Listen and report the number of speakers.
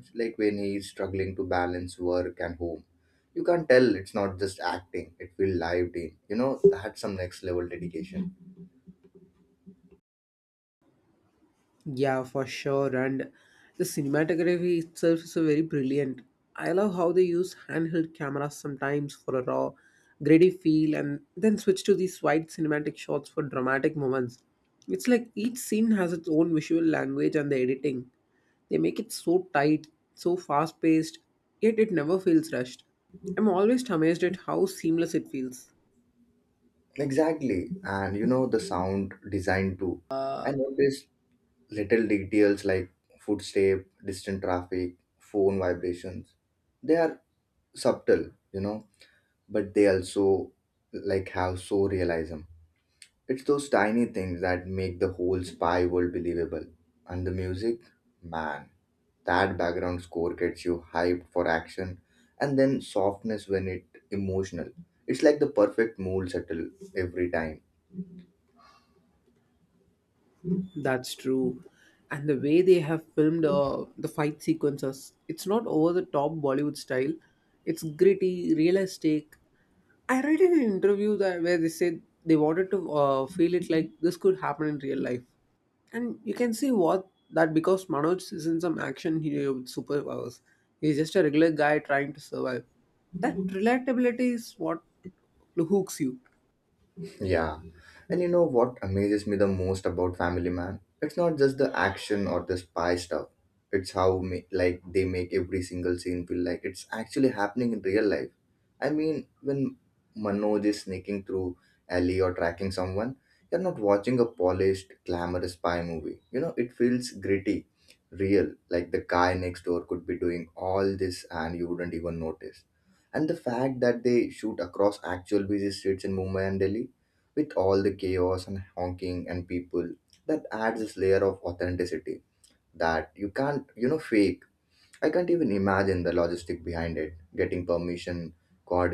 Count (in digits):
2